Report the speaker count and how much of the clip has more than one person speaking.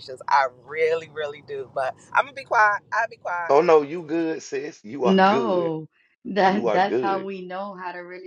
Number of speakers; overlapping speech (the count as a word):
three, about 18%